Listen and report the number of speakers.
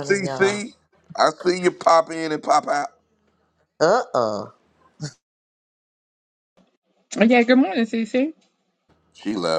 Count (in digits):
3